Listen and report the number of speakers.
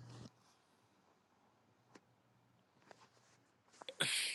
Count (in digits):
0